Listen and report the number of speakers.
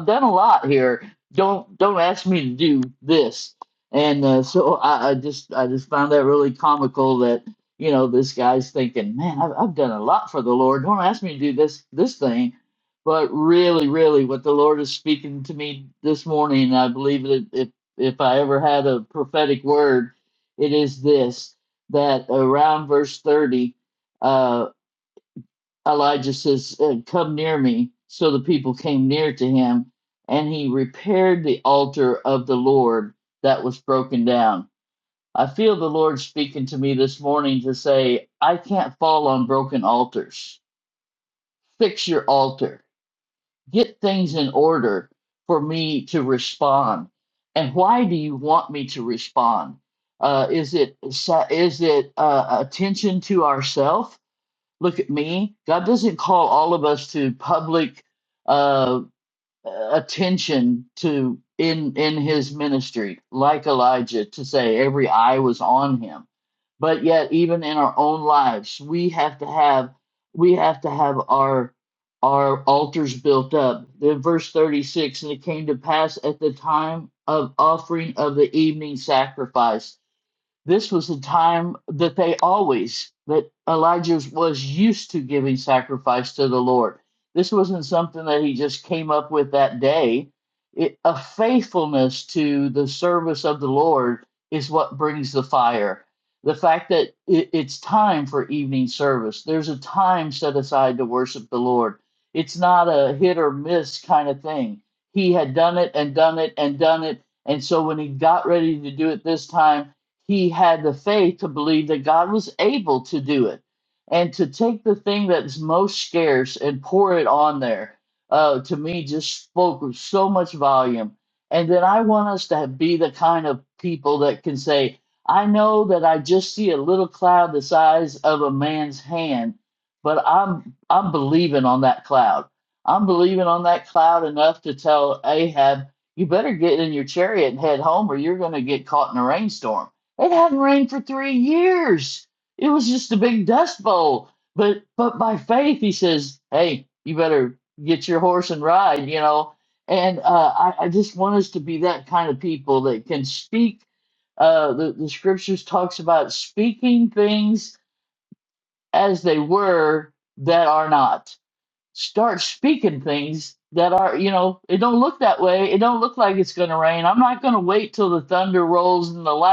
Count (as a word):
one